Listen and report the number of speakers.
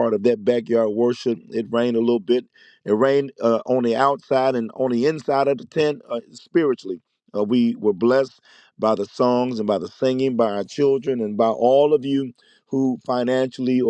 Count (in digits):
1